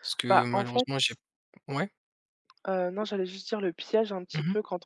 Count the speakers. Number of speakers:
2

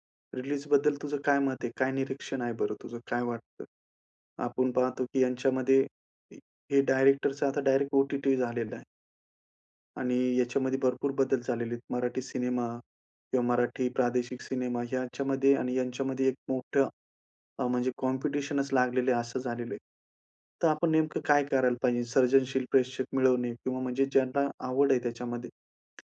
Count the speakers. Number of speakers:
1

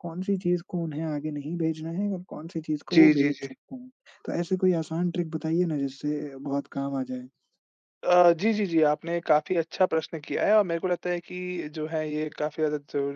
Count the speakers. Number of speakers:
2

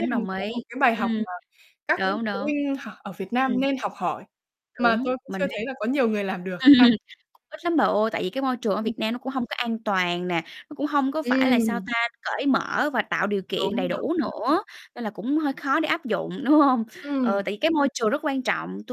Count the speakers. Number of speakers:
2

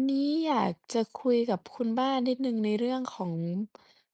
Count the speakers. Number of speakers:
1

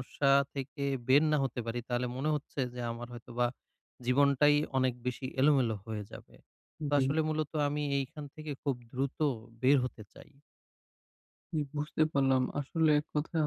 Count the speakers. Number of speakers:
2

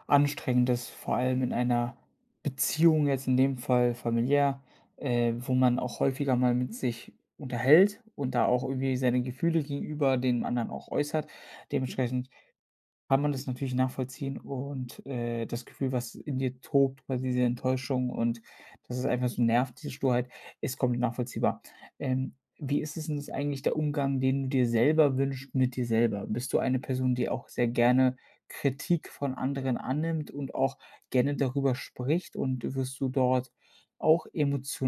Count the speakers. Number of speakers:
1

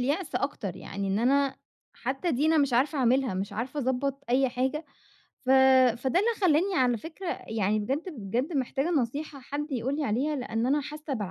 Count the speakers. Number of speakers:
1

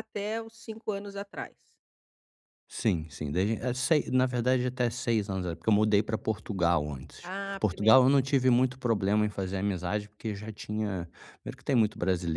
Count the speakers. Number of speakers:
2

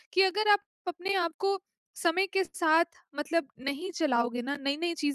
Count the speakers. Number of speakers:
1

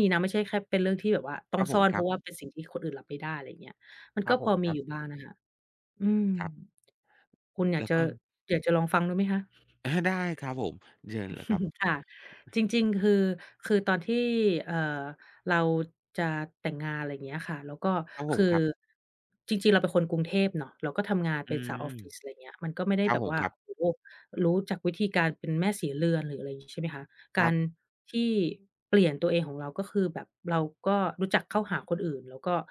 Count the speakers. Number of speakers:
2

